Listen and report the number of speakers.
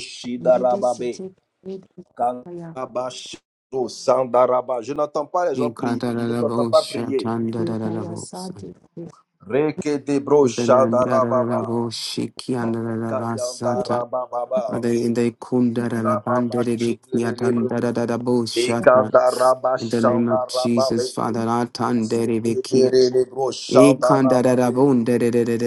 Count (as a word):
three